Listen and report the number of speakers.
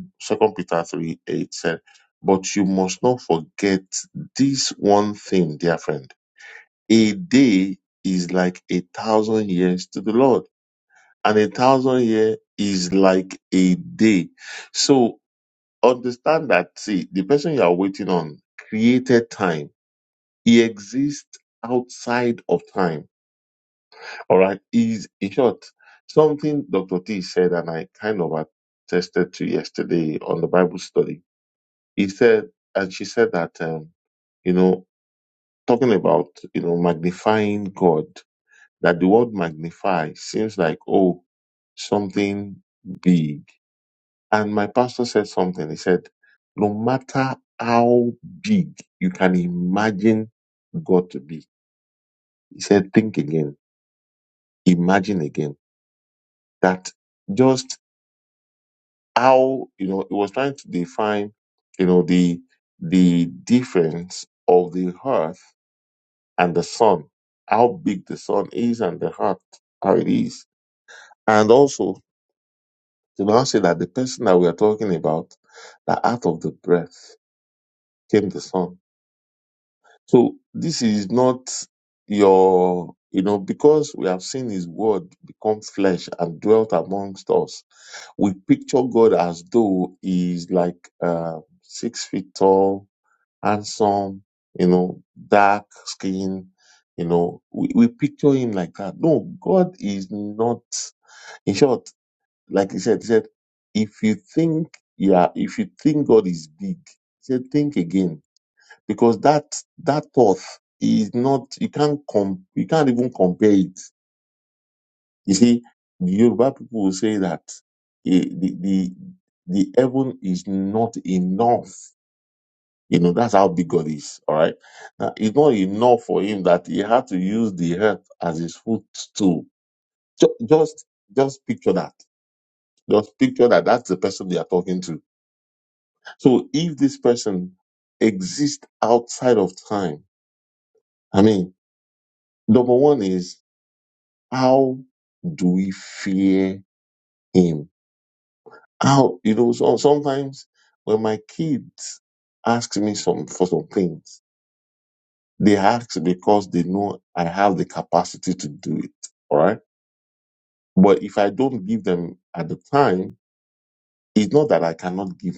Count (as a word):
one